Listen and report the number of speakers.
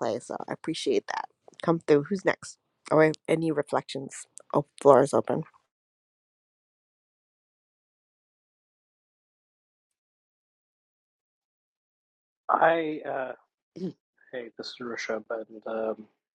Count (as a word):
two